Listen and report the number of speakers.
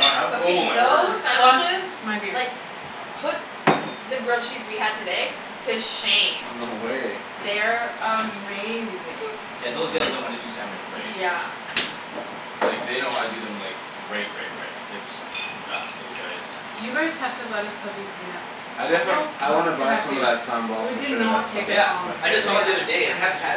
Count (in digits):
4